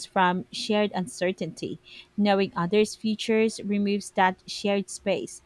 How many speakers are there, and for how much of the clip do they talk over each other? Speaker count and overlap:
1, no overlap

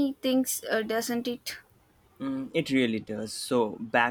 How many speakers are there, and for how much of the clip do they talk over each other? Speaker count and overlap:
2, no overlap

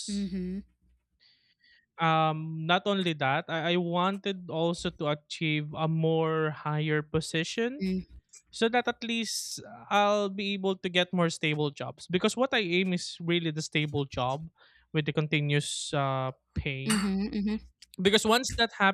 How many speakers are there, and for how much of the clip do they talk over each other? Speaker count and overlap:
2, about 1%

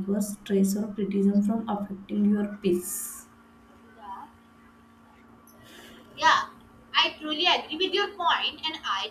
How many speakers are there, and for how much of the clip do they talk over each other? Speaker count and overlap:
2, no overlap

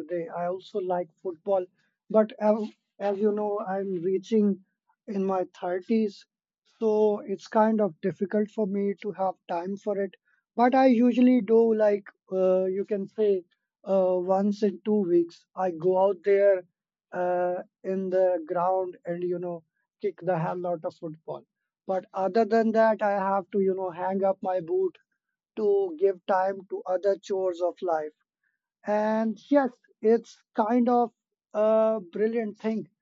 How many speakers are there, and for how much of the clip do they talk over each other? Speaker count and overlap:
1, no overlap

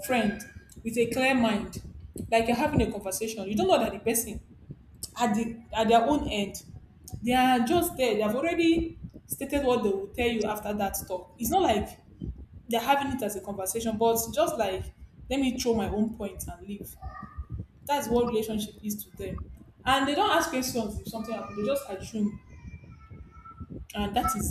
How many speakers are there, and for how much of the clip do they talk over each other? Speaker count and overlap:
1, no overlap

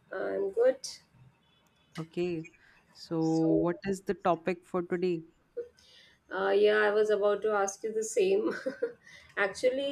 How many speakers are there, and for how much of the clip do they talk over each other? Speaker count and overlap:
2, about 1%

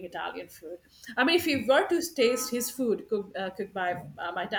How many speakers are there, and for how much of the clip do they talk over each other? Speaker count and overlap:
1, no overlap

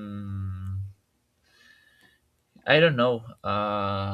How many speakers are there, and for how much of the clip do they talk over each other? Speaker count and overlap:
1, no overlap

